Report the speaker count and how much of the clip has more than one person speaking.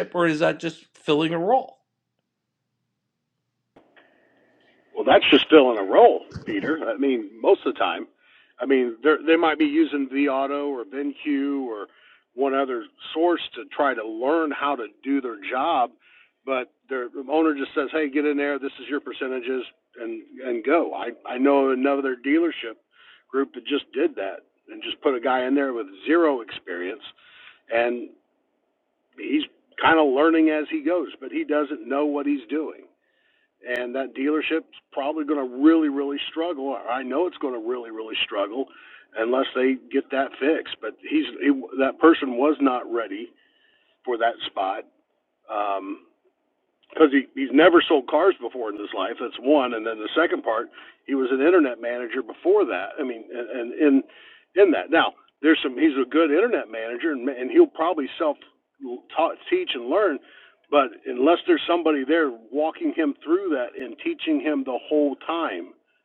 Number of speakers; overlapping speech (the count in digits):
2, no overlap